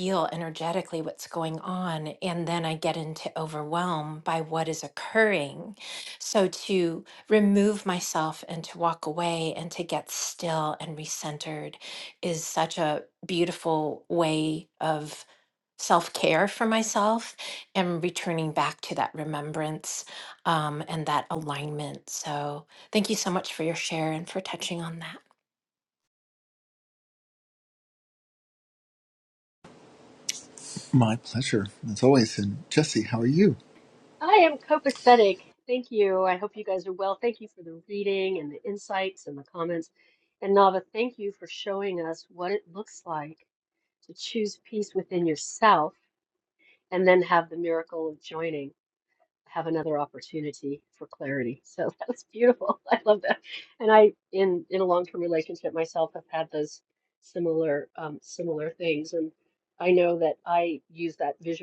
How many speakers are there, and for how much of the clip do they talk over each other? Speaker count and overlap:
three, no overlap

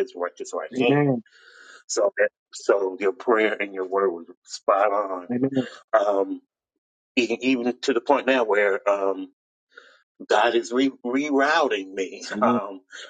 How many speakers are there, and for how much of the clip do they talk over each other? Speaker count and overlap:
two, about 4%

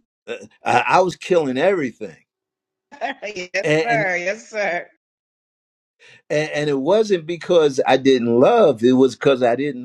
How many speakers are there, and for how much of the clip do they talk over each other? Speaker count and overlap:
two, about 5%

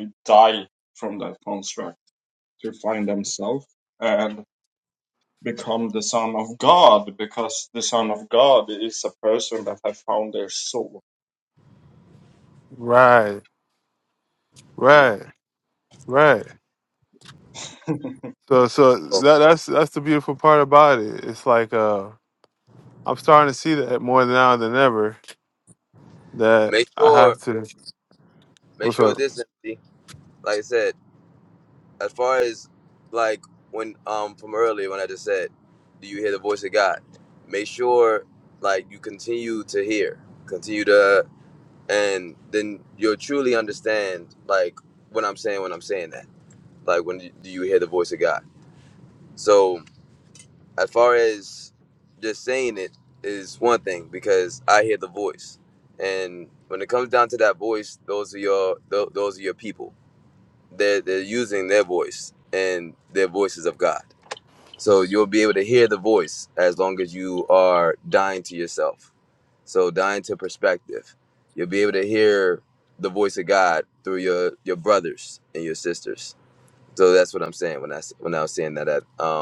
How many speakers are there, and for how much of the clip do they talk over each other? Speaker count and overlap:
three, about 2%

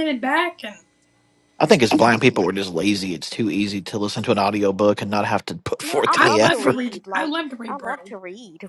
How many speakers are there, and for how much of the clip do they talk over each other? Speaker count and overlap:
three, about 22%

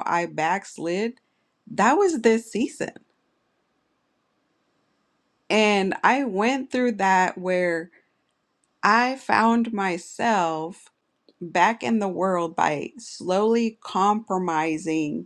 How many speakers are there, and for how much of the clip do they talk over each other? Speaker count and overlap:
one, no overlap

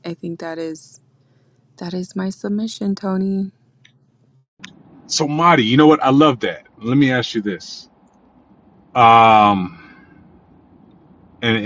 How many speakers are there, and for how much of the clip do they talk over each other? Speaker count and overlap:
two, no overlap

